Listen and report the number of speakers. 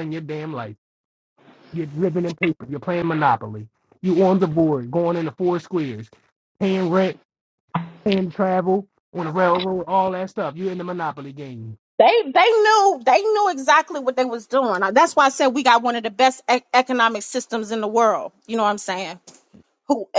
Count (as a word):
two